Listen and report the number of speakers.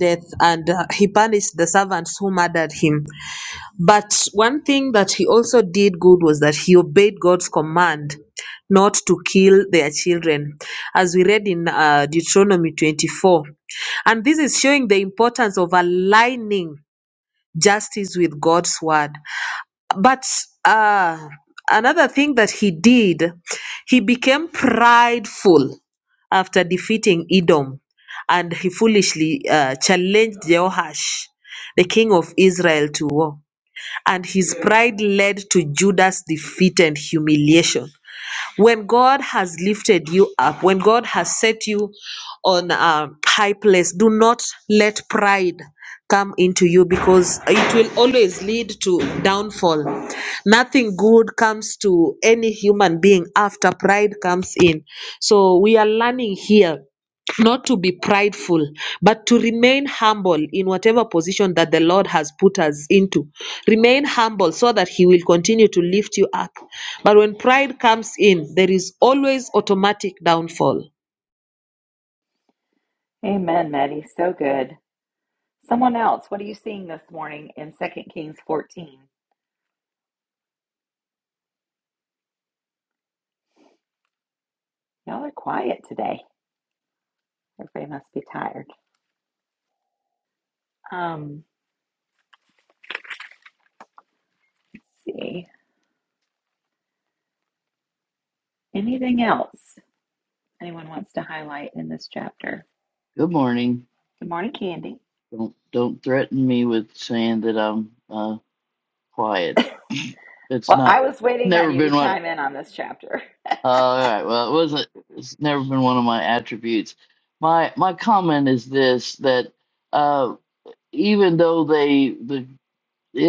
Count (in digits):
3